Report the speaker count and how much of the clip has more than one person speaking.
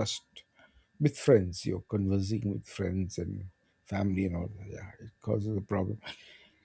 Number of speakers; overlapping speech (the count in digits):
1, no overlap